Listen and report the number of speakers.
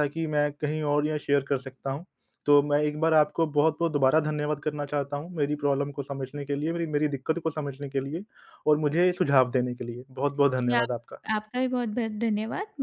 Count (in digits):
2